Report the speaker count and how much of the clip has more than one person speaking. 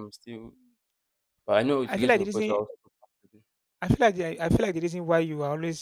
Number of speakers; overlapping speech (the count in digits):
2, about 15%